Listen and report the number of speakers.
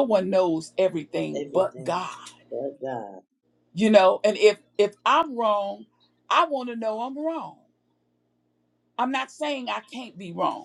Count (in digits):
2